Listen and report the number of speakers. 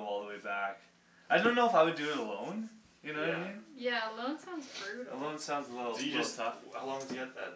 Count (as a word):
three